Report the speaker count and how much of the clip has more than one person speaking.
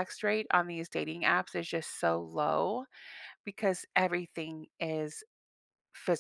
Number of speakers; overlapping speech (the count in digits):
1, no overlap